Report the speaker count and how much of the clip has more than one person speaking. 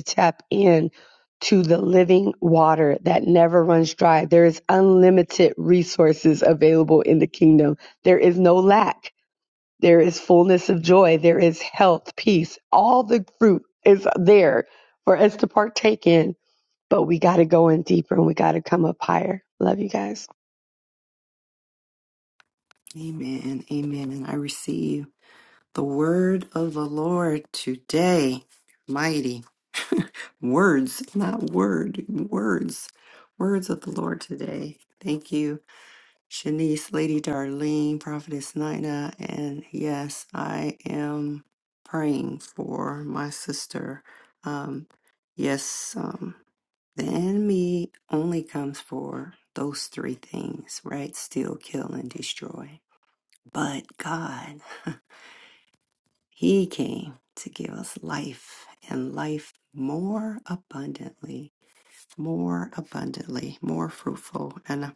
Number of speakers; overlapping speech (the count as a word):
two, no overlap